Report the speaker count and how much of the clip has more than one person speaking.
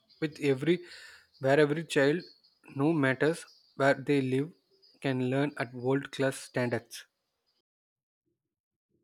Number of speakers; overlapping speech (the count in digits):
1, no overlap